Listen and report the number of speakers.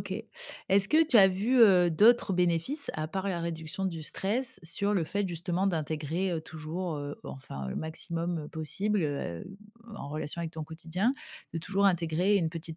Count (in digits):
1